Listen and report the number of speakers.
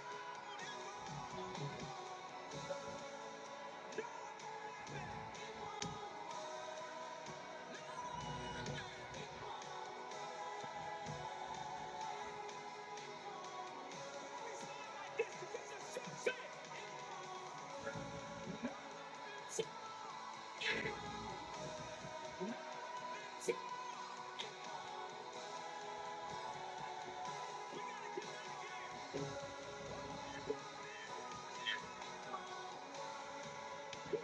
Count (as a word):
zero